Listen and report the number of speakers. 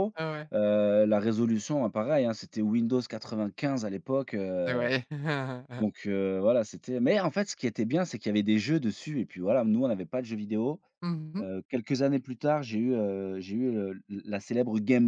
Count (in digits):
2